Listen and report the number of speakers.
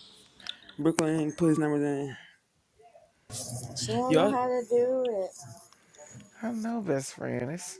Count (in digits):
3